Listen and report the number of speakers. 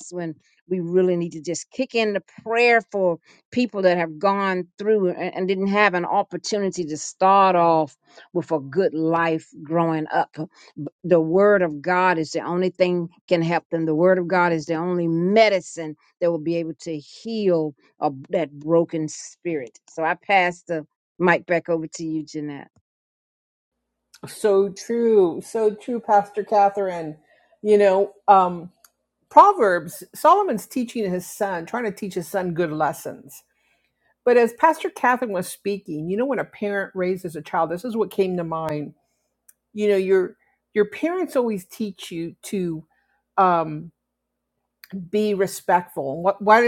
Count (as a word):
two